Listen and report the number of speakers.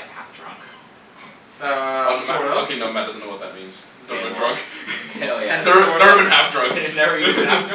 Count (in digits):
3